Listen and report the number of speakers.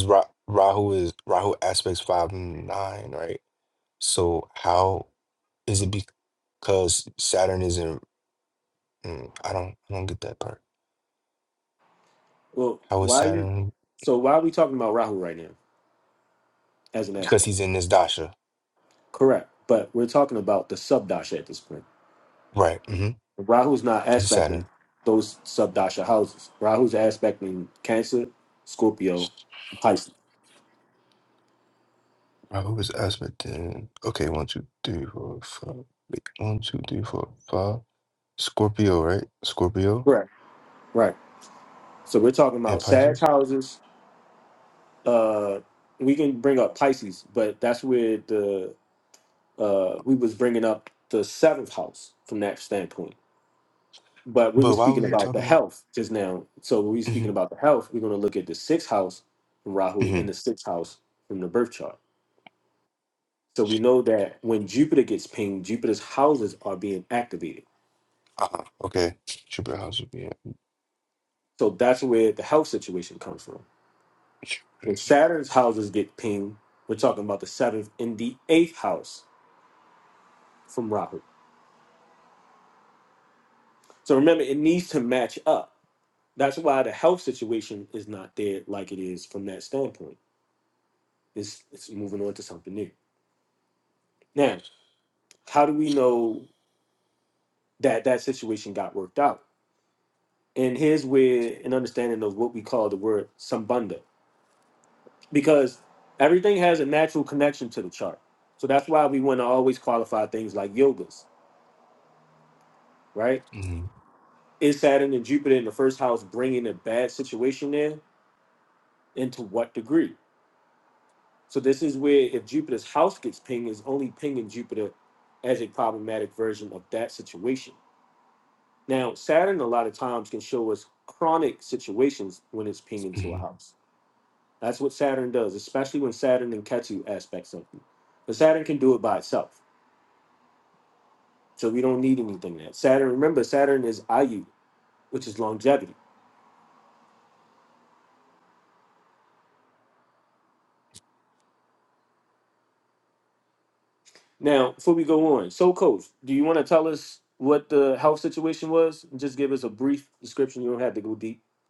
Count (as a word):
two